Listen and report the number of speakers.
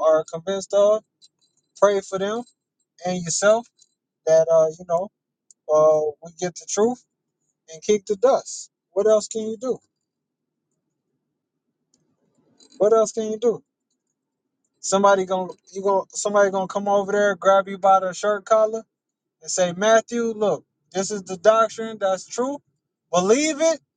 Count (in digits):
1